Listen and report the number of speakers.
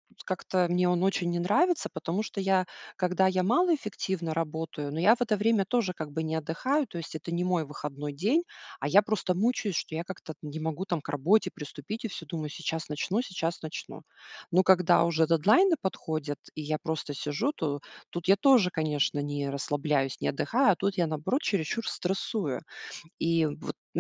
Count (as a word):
one